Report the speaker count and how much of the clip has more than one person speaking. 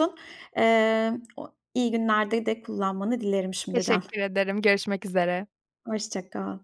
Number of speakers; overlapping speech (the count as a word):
two, about 5%